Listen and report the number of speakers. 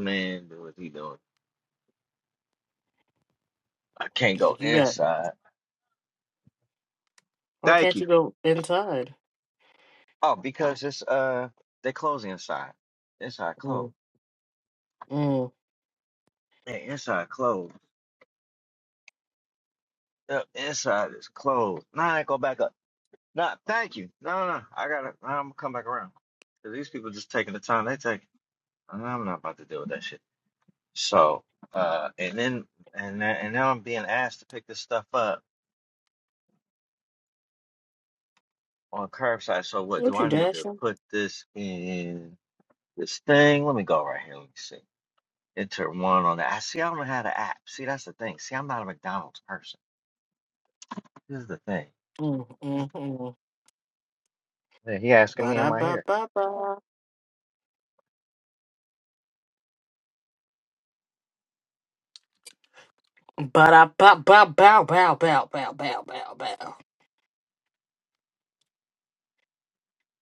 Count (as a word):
two